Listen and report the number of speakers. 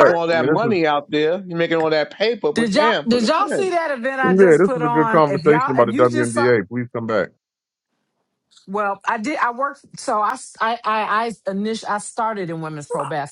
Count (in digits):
3